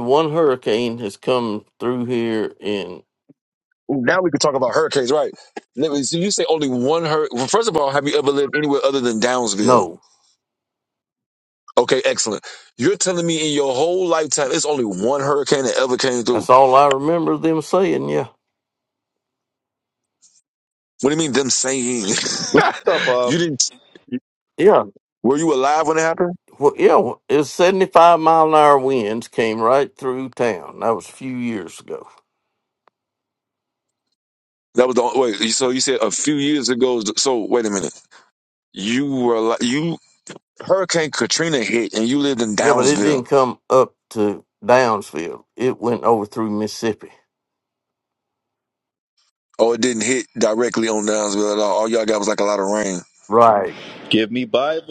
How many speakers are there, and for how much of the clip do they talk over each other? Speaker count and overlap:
3, about 2%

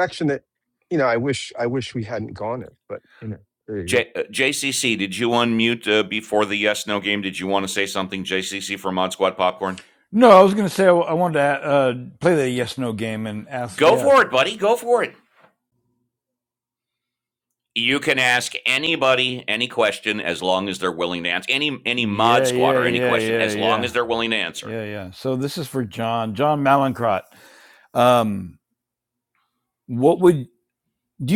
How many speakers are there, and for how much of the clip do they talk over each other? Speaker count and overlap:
3, about 8%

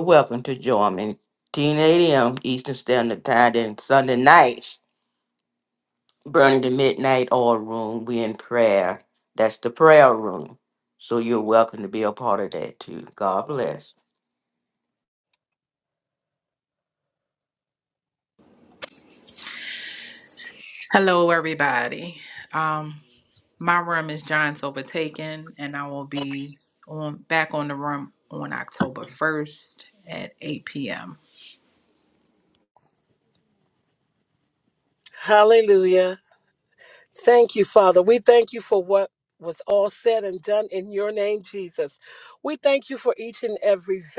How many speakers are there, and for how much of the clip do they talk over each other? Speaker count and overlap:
3, no overlap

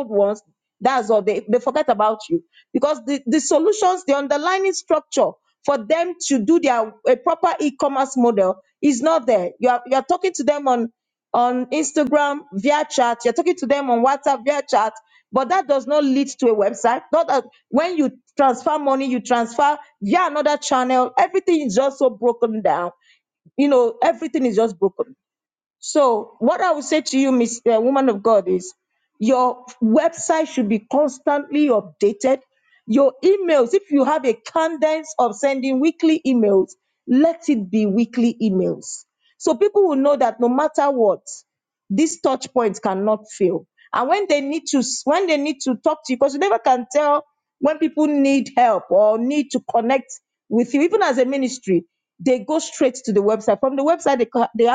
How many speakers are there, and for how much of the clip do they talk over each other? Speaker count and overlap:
1, no overlap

